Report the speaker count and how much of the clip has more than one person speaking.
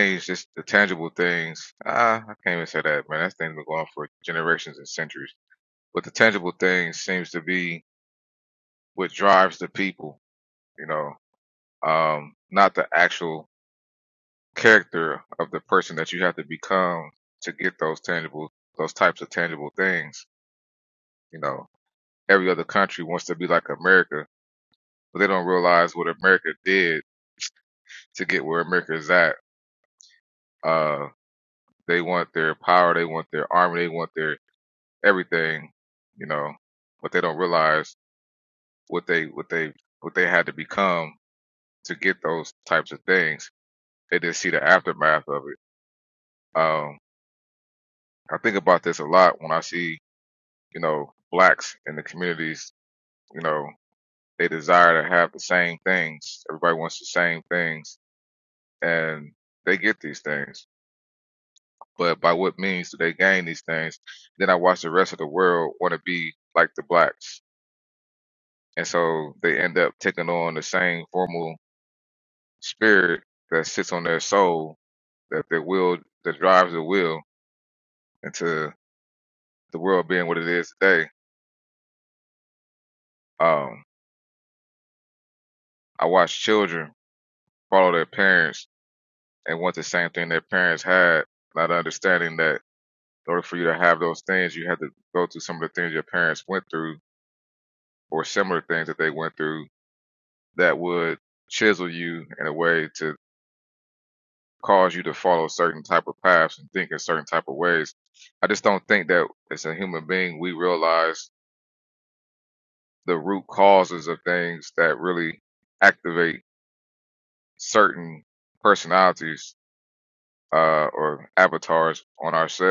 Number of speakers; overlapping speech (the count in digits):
1, no overlap